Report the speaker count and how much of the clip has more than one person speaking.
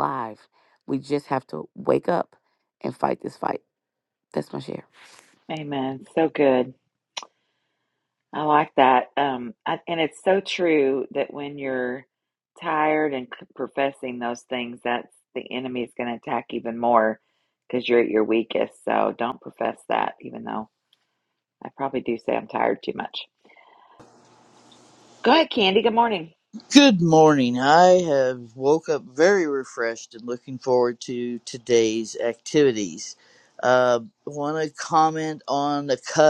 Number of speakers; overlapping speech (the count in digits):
3, no overlap